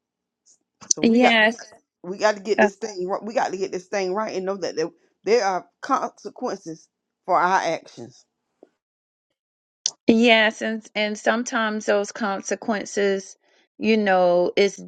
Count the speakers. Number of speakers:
two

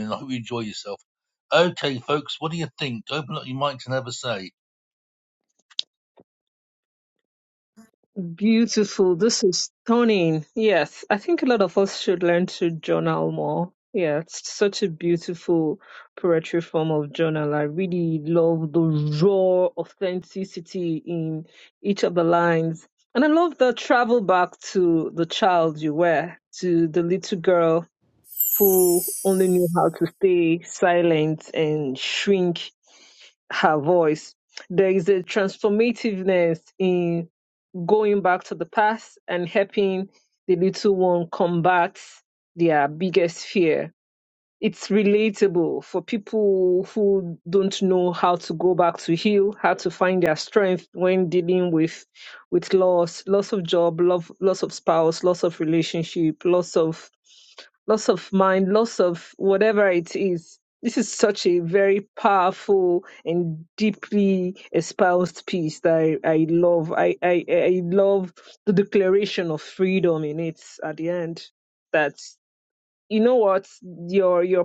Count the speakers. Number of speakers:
two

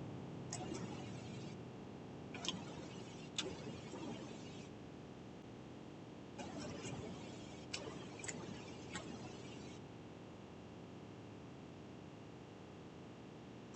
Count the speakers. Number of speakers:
zero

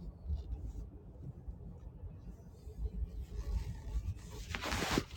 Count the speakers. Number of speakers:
zero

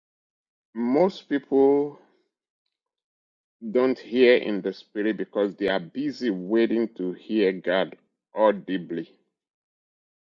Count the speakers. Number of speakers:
one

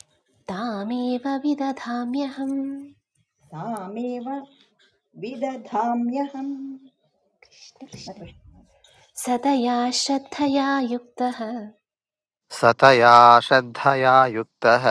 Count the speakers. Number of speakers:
three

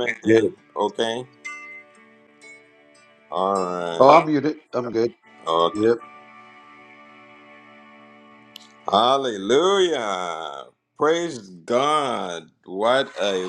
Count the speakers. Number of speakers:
two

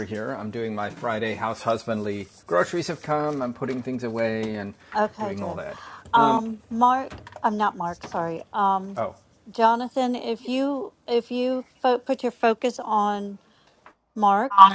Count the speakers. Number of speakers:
two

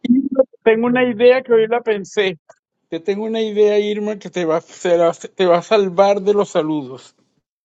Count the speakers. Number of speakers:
one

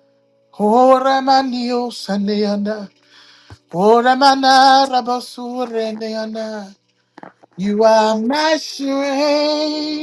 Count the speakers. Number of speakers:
one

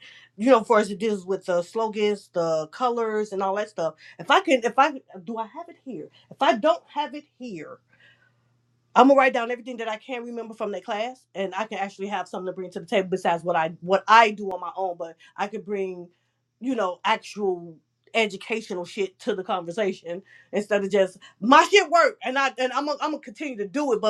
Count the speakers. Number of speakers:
one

